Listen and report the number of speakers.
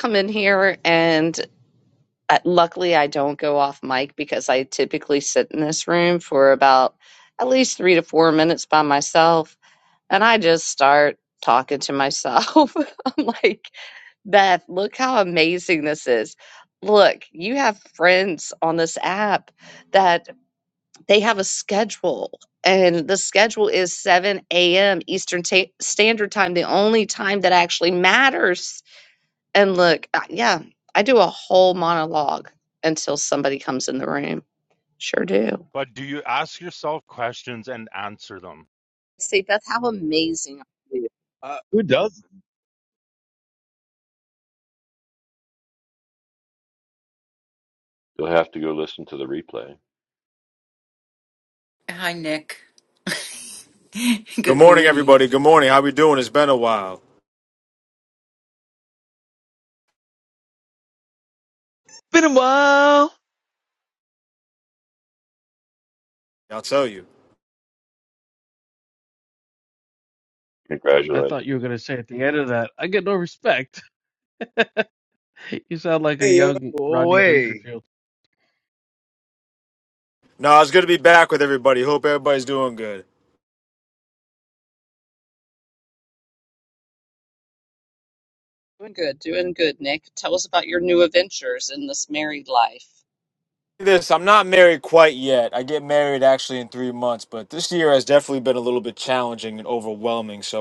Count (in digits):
7